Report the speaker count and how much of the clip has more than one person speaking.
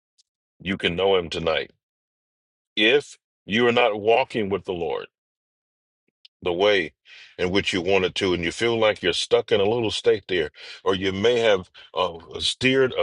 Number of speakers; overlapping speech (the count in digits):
1, no overlap